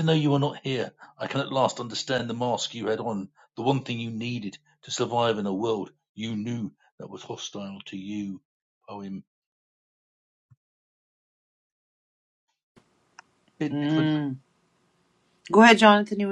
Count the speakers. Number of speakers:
two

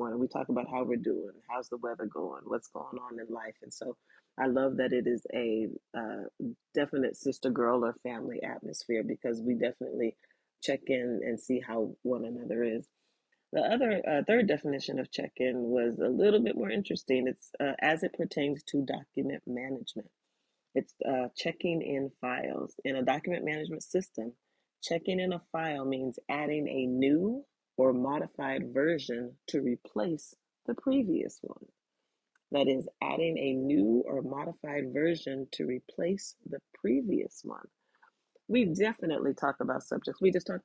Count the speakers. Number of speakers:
one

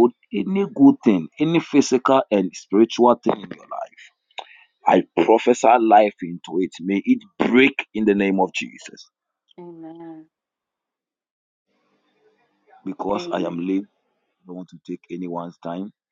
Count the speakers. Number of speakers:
two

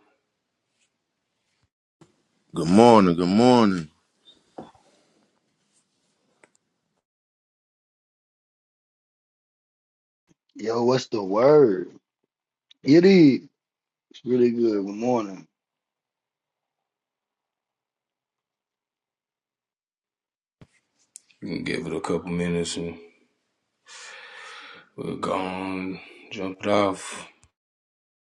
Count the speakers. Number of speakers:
three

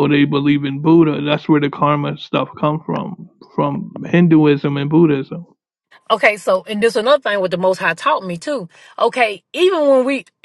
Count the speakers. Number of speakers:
two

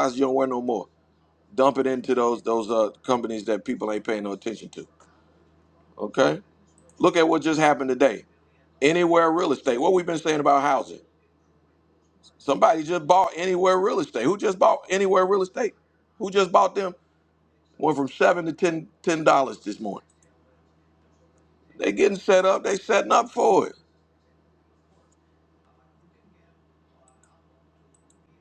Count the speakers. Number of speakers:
one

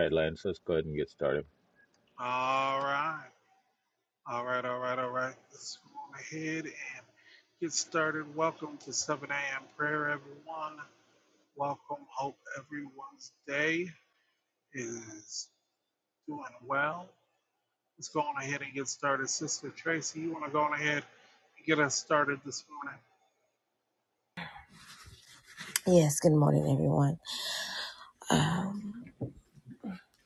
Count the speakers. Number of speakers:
three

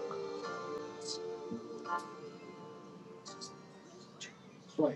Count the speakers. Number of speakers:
zero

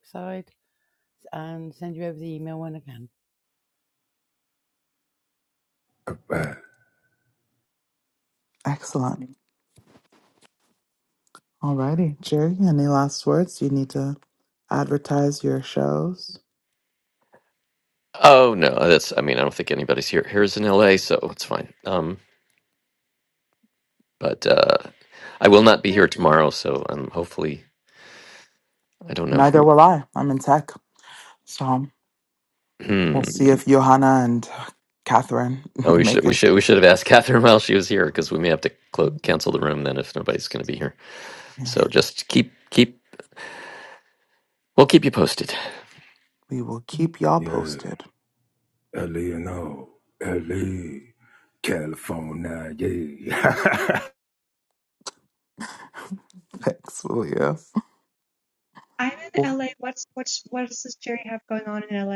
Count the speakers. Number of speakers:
five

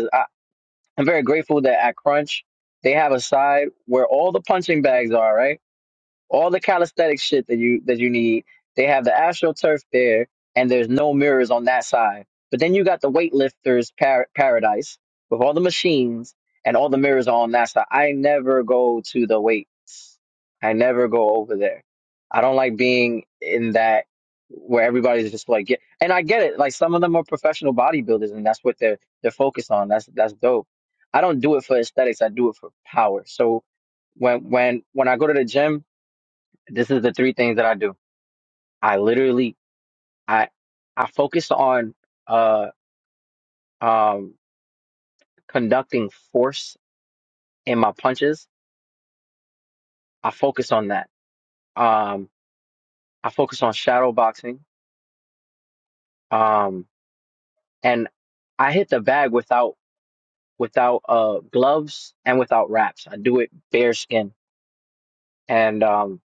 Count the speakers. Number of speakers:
one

